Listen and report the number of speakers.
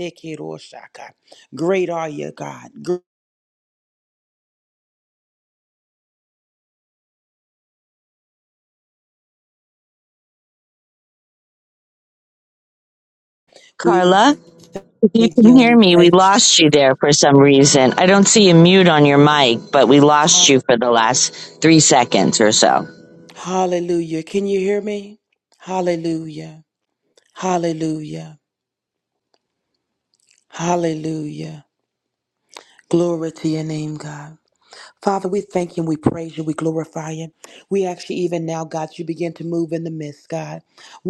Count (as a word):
two